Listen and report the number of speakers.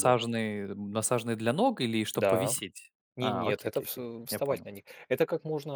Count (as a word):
two